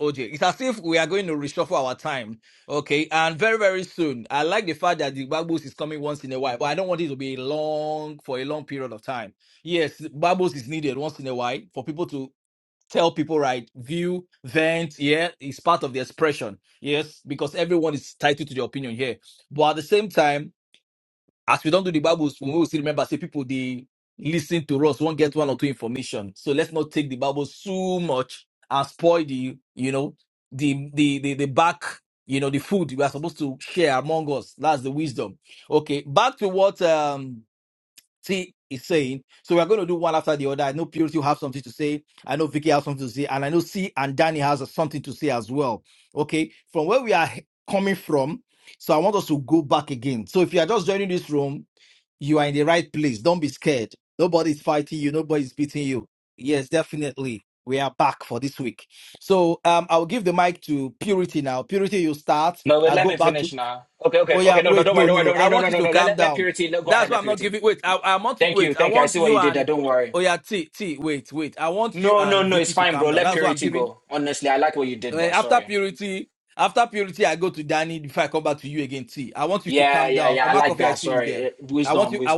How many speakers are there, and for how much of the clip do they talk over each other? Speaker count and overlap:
two, about 12%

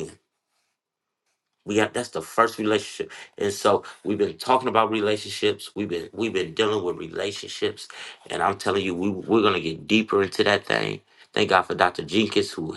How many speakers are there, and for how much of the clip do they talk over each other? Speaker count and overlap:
one, no overlap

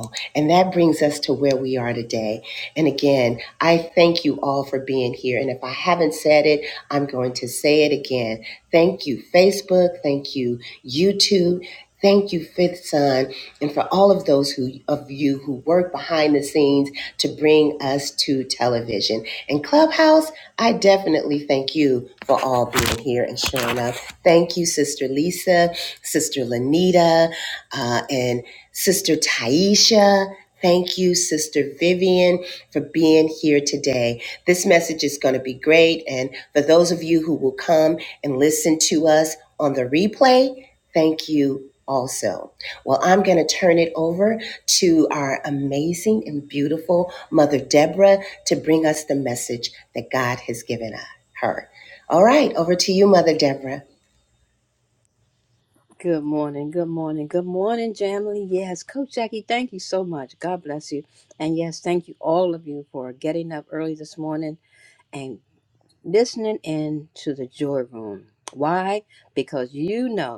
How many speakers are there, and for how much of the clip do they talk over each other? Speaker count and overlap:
two, no overlap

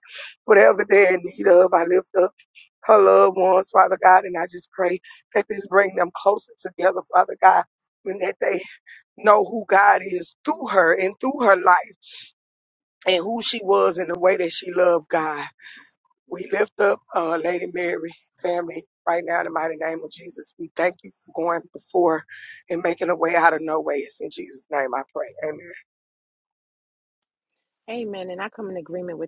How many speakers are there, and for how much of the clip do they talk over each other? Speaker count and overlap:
two, no overlap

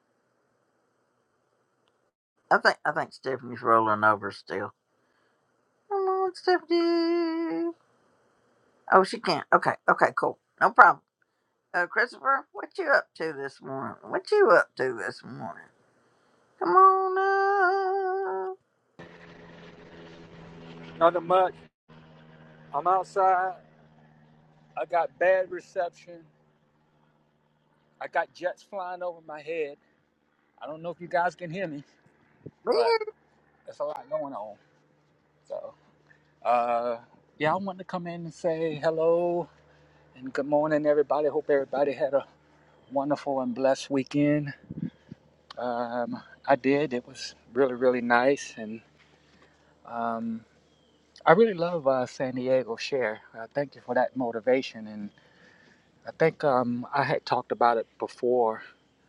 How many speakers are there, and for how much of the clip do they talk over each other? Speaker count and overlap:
two, under 1%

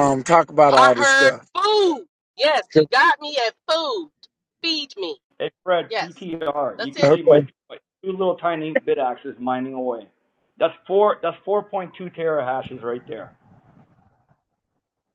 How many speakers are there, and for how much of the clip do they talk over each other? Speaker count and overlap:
three, about 10%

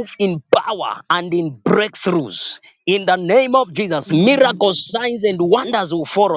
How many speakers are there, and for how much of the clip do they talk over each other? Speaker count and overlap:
one, no overlap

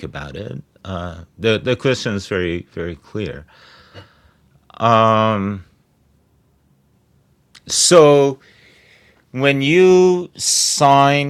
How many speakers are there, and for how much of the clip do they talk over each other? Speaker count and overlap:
one, no overlap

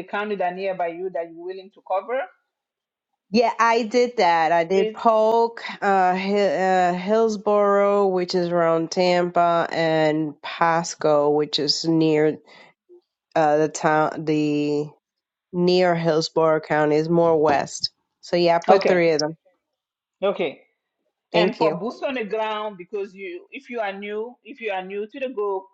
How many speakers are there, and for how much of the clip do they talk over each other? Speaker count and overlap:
two, about 5%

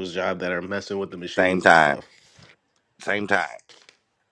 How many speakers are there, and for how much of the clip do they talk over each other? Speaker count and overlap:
two, about 14%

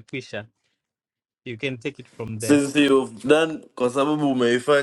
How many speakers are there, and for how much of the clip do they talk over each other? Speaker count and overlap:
two, about 2%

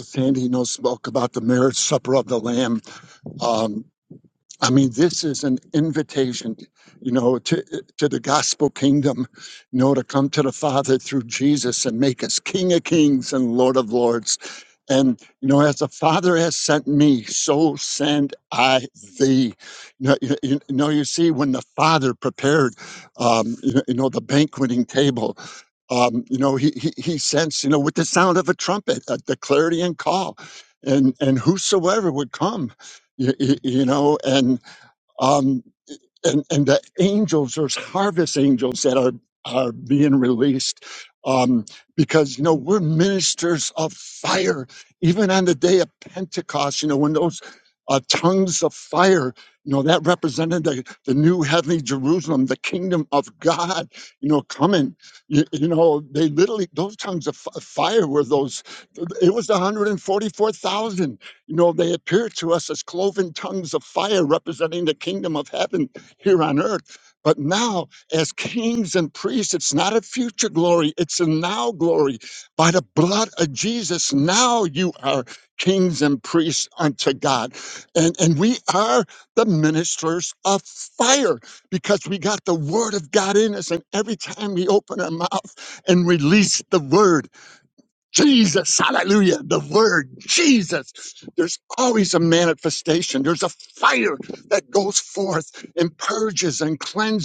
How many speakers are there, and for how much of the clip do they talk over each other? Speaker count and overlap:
one, no overlap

